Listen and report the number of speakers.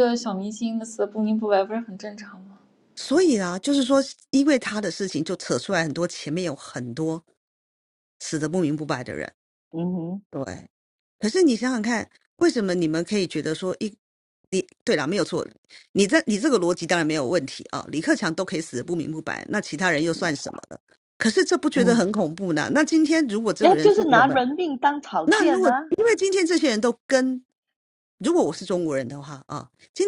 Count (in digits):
3